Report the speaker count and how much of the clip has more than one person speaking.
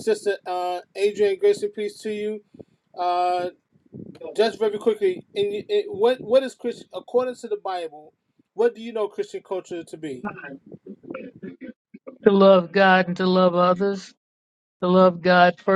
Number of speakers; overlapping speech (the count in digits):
2, no overlap